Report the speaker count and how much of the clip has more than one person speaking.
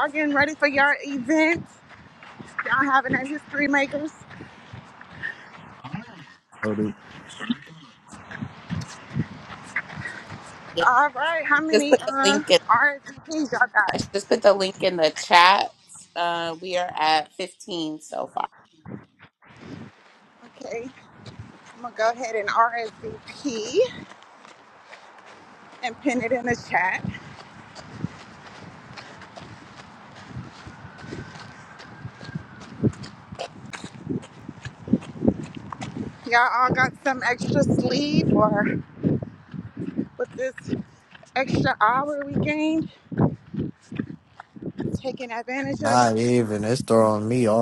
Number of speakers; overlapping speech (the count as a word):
three, about 3%